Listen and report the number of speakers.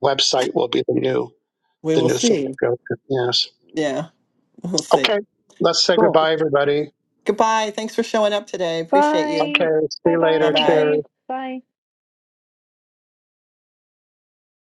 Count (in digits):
3